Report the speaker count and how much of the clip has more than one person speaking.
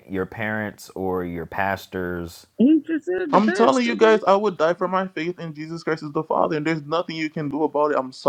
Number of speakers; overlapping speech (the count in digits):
3, about 10%